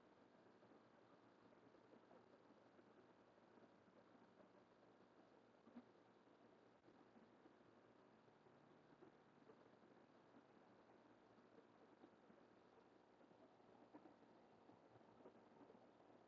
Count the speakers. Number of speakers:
0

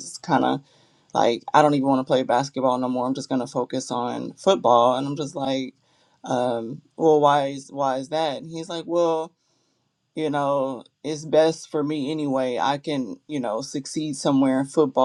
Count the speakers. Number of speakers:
1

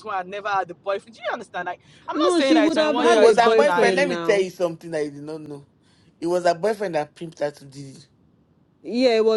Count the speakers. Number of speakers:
3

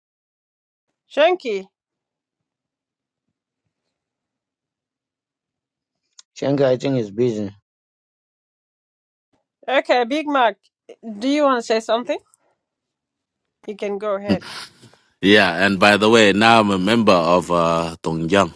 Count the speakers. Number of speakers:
3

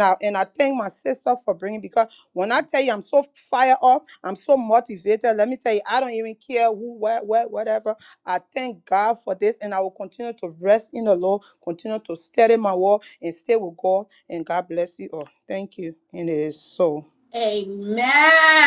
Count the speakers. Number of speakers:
2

